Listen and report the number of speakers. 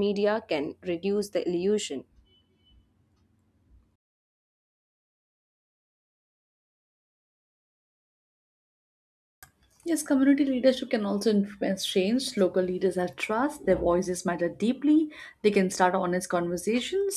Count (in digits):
2